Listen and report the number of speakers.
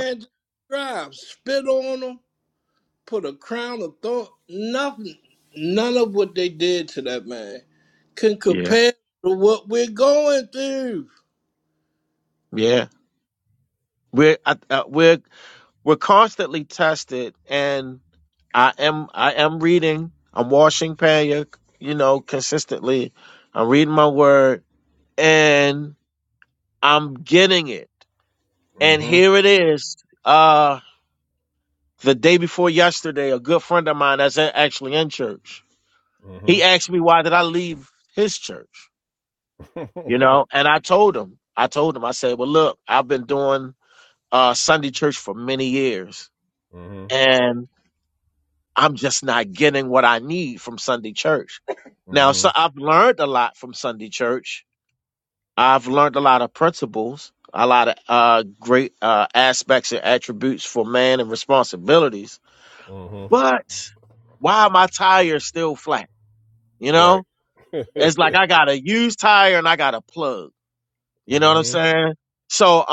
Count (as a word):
three